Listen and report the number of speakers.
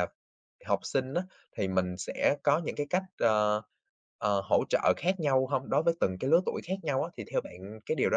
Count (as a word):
one